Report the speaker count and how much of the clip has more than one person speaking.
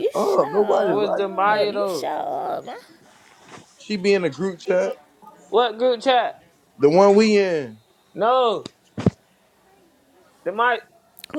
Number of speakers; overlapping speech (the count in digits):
3, about 18%